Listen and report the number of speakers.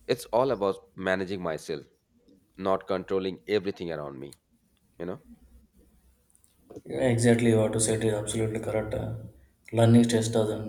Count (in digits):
2